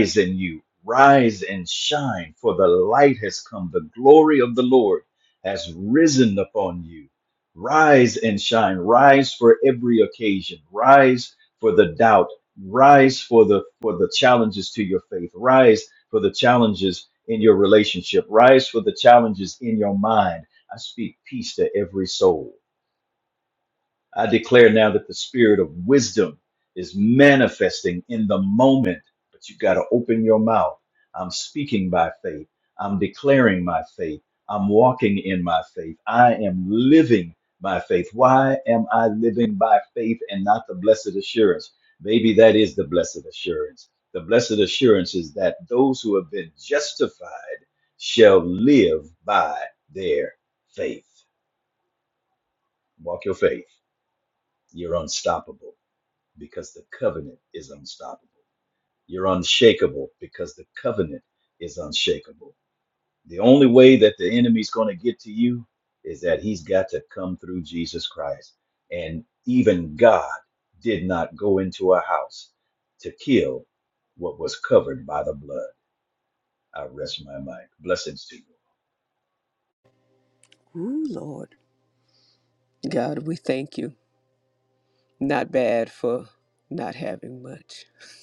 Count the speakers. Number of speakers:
2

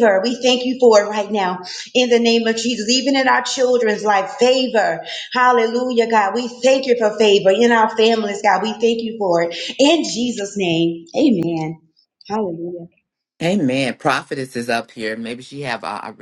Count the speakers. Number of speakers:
2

